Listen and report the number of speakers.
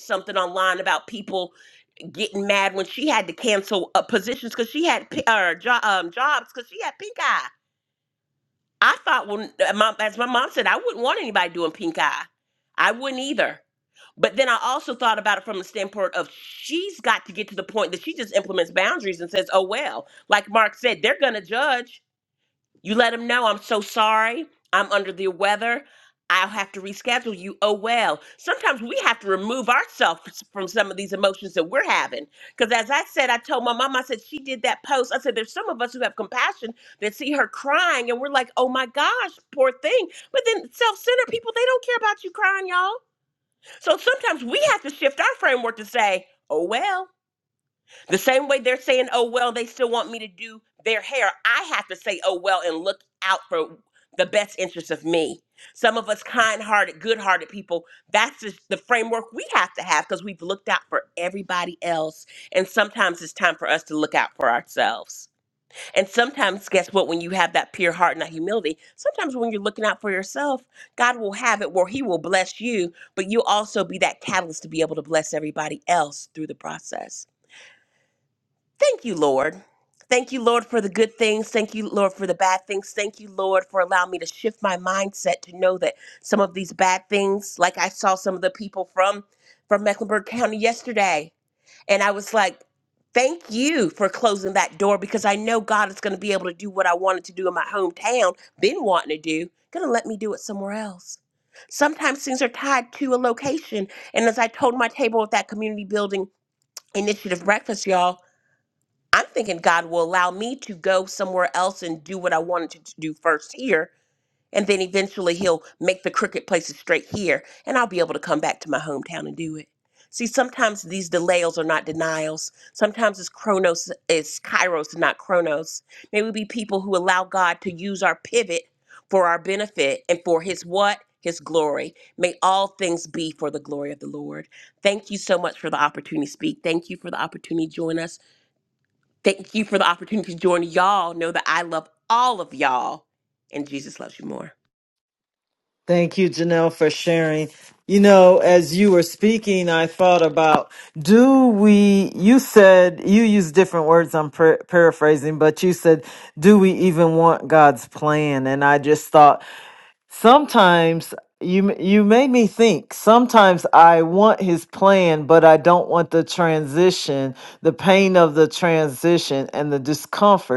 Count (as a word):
two